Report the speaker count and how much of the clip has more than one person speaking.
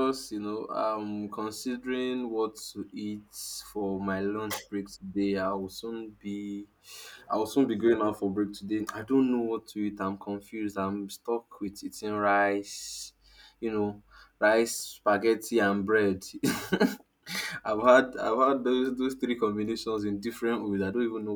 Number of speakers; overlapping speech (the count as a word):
one, no overlap